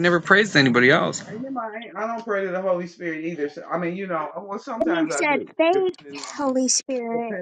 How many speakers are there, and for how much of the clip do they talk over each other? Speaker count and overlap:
3, about 27%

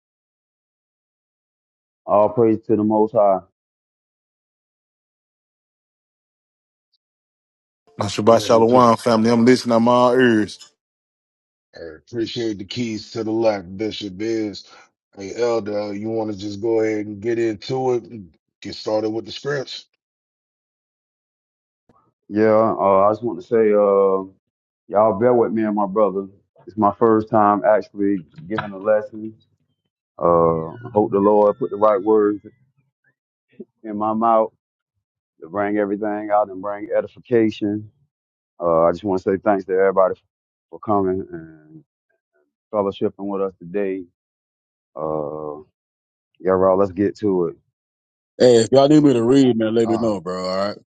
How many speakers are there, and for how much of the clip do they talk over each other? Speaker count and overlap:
4, about 2%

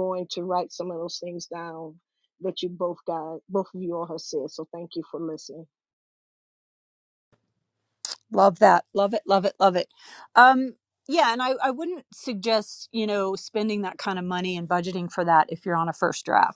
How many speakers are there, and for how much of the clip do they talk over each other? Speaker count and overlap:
2, no overlap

